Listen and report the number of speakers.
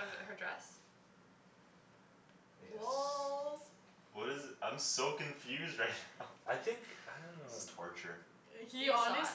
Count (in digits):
4